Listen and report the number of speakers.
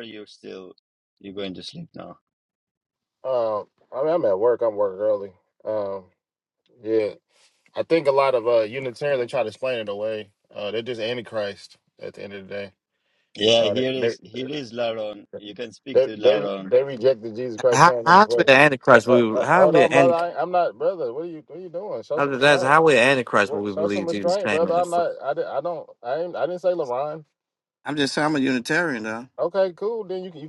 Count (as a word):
three